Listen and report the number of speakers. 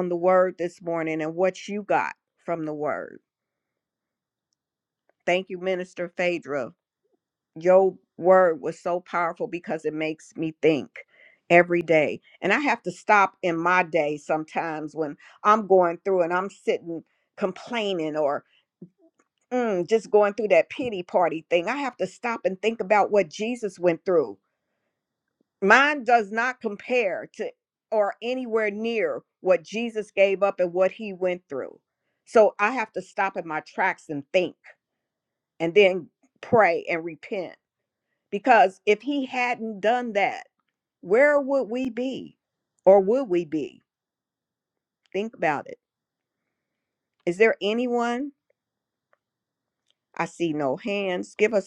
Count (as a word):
one